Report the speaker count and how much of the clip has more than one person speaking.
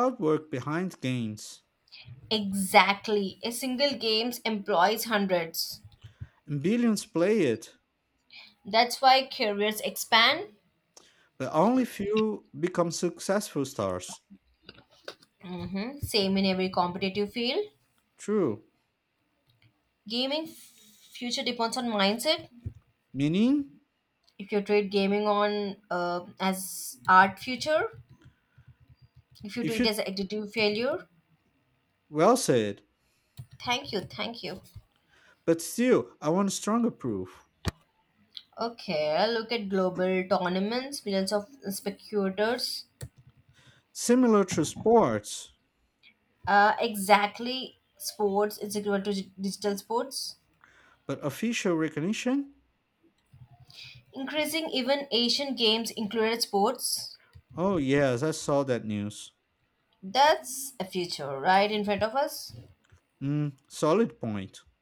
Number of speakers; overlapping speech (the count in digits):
2, under 1%